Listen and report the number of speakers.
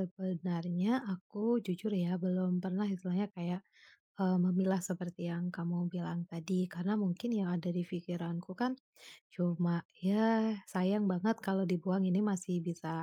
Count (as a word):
one